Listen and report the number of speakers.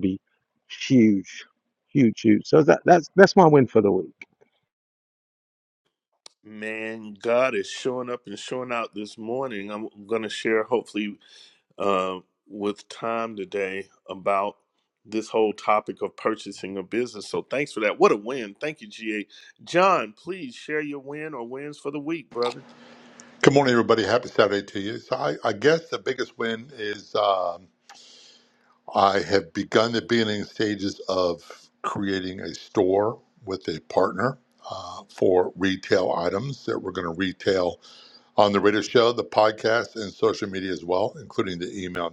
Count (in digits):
3